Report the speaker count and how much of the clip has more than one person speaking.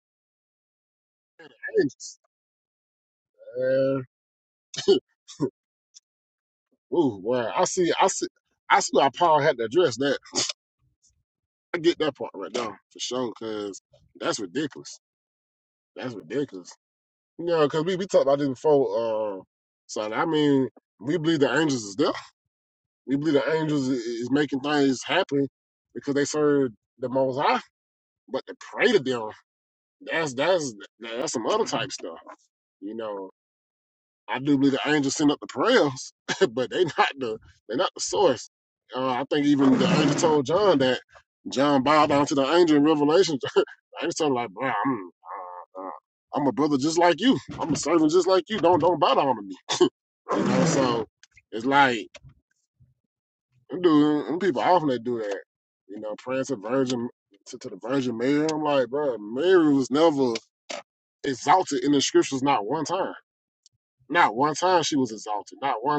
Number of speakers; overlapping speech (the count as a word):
one, no overlap